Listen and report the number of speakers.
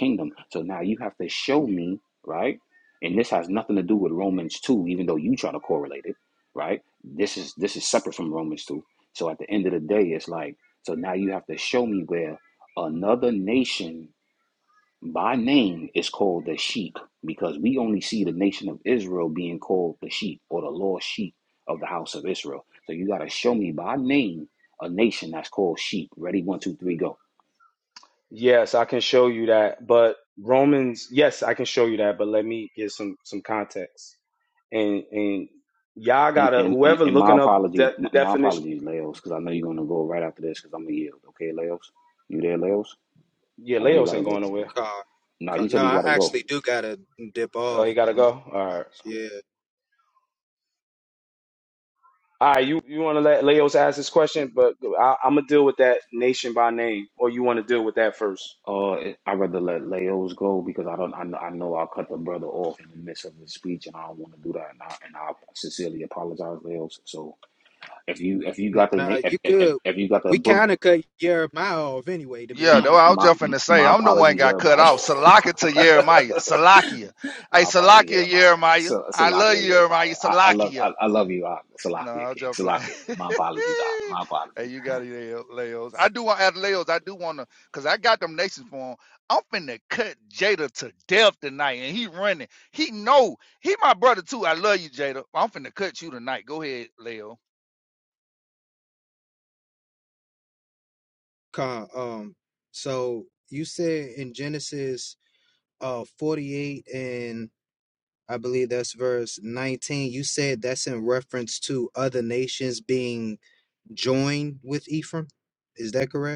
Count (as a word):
four